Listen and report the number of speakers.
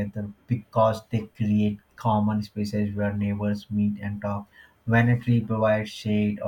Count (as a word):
one